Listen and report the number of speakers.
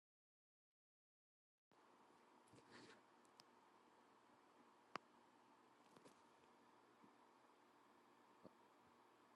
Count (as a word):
zero